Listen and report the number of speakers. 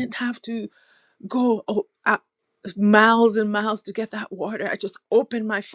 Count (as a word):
one